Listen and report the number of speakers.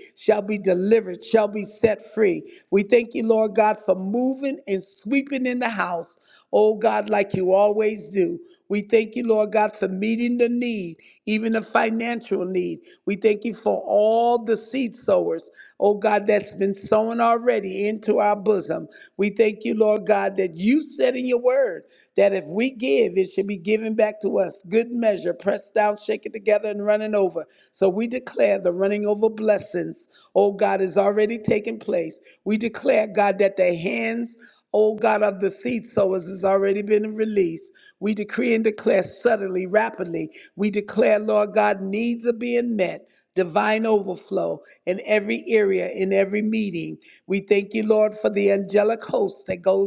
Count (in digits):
1